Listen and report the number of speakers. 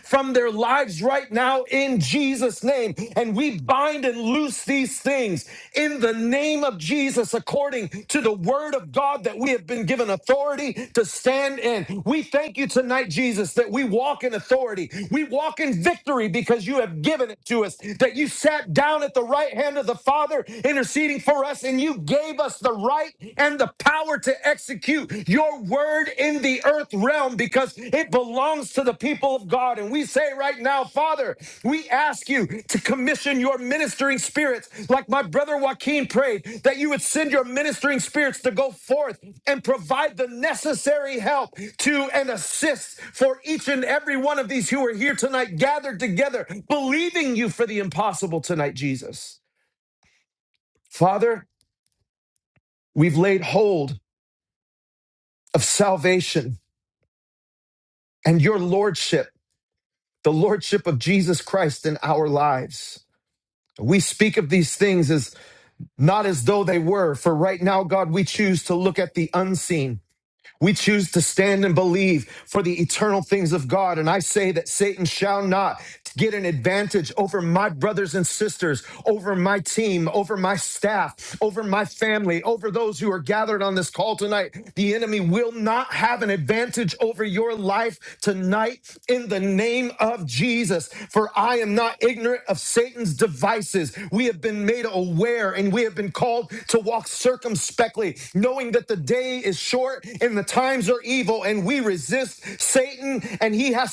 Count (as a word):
one